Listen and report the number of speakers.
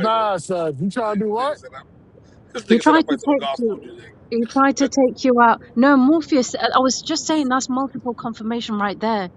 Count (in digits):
3